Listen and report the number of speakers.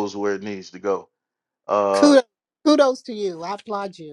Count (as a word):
two